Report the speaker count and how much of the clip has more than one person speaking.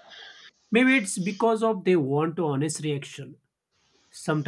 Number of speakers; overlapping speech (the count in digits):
1, no overlap